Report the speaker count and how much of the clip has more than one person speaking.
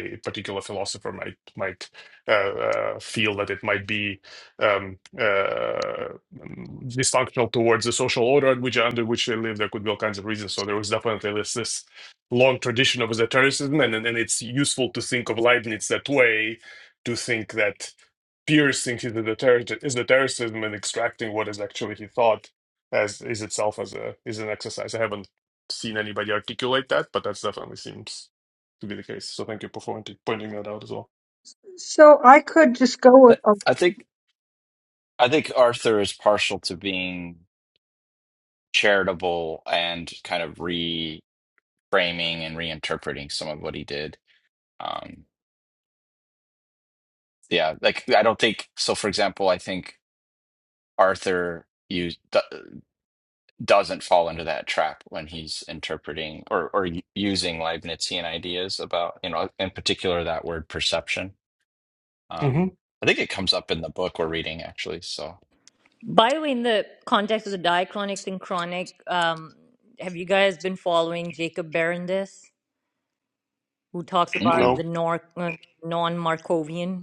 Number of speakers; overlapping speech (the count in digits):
4, about 1%